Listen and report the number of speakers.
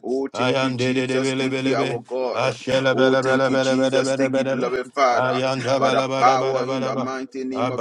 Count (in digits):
2